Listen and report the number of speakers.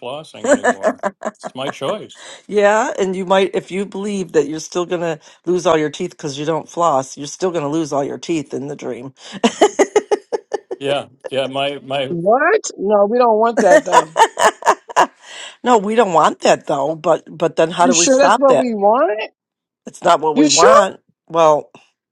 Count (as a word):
three